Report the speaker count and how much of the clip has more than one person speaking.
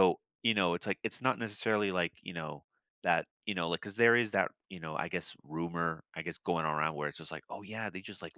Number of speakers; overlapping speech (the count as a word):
one, no overlap